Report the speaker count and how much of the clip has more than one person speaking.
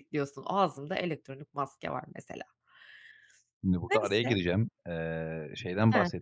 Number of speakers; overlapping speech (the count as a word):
two, about 12%